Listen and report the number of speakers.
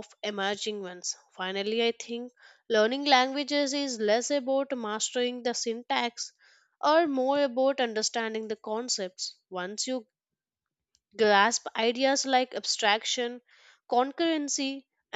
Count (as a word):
one